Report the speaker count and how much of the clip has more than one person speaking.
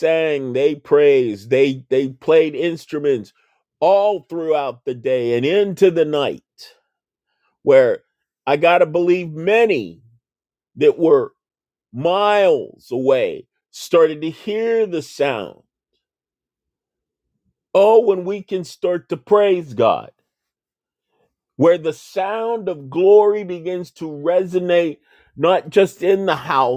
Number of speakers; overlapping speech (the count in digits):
1, no overlap